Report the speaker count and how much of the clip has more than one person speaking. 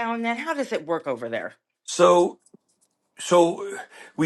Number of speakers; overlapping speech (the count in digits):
2, no overlap